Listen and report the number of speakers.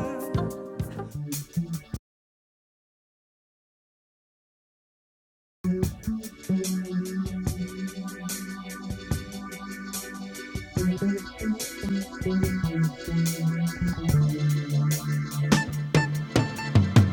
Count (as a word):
zero